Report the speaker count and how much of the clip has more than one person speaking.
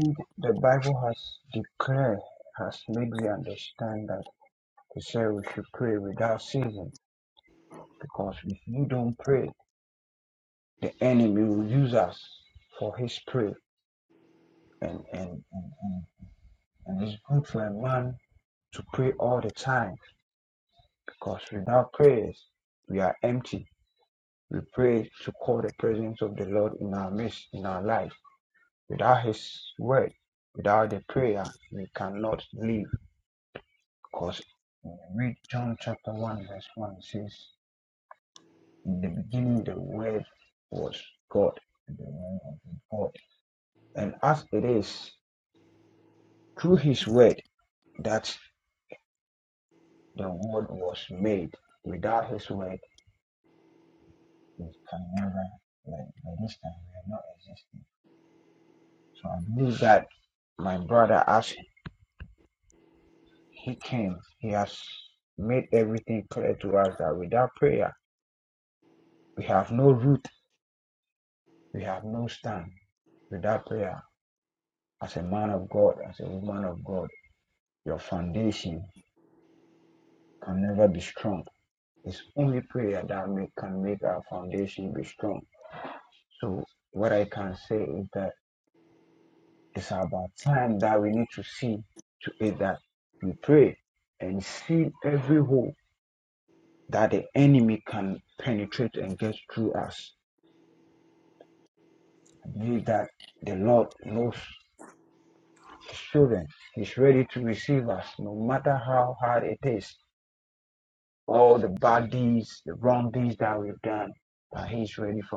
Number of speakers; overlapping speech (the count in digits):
1, no overlap